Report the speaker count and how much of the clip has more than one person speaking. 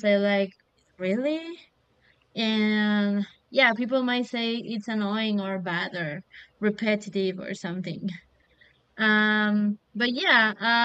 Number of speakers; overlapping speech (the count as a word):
one, no overlap